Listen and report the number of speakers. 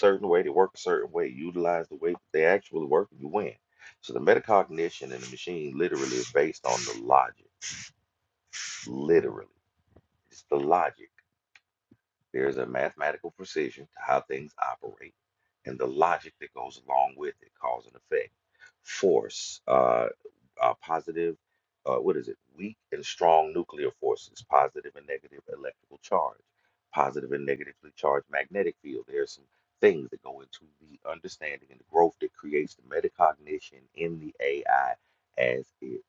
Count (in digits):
1